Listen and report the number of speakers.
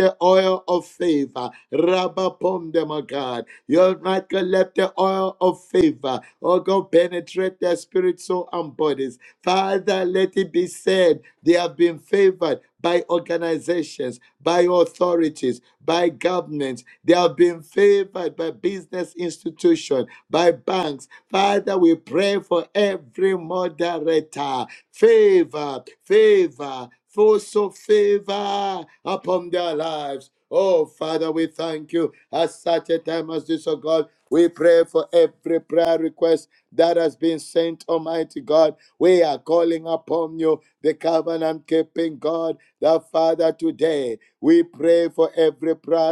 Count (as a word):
one